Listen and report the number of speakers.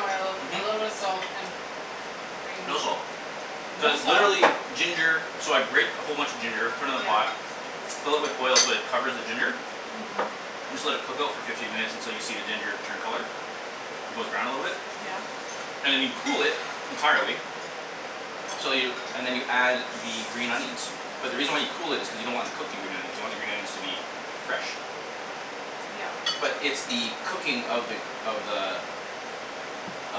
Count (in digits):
2